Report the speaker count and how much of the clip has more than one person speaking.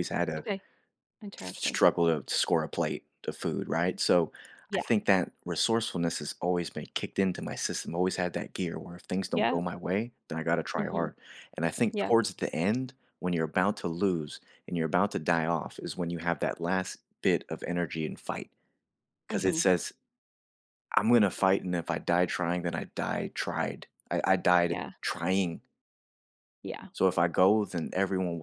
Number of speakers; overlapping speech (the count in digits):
2, about 7%